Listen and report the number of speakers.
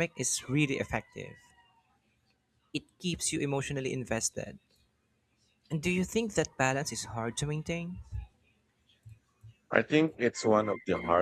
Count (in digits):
2